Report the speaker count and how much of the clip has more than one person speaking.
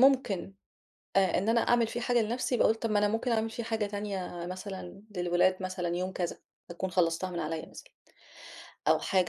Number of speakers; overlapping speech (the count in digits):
1, no overlap